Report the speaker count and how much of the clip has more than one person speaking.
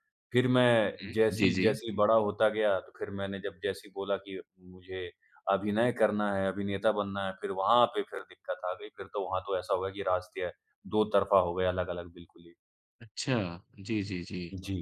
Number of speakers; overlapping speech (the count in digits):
2, about 5%